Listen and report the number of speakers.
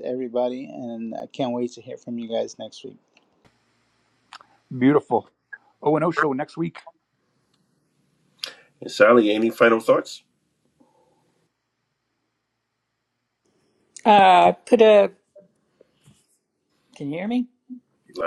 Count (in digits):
4